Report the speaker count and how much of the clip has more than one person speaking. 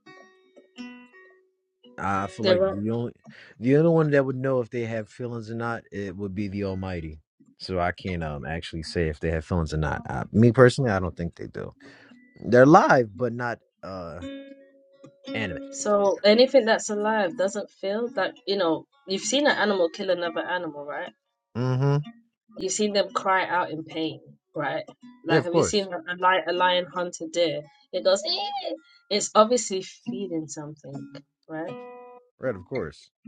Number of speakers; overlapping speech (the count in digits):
2, about 3%